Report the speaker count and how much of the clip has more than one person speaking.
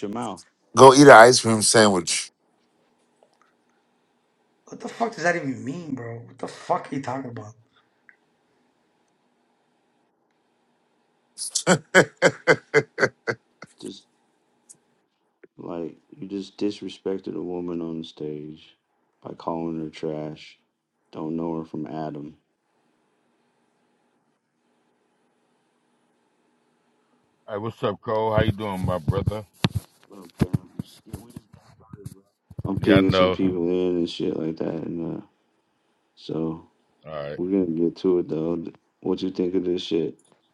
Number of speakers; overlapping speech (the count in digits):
4, about 2%